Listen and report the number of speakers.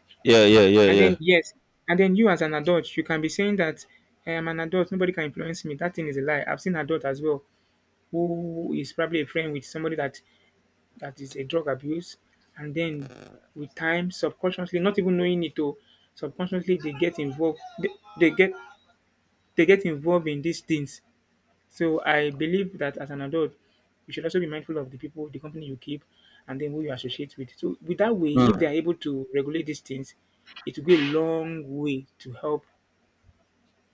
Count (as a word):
two